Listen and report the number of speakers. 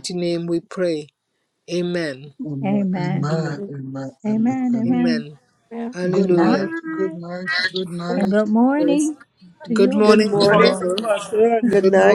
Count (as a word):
four